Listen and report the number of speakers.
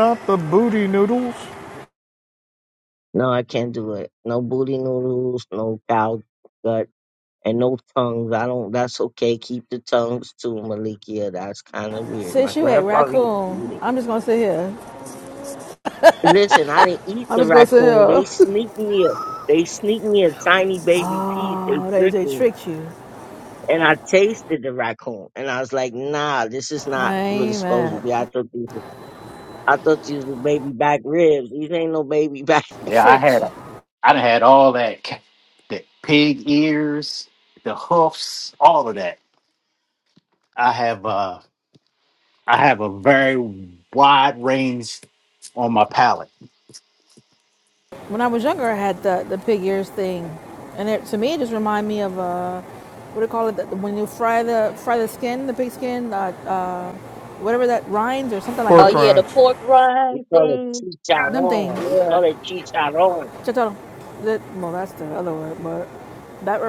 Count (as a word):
five